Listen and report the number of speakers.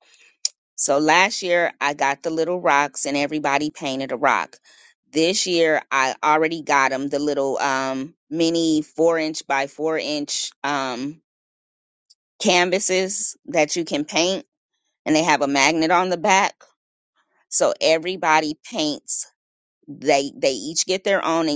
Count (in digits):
1